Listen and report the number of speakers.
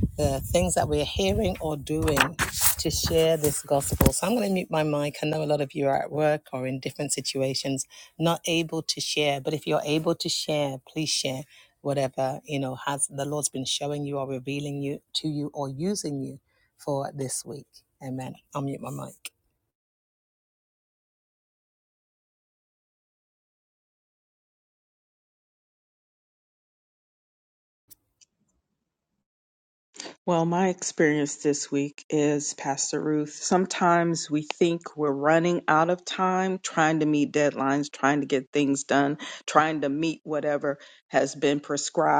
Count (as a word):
two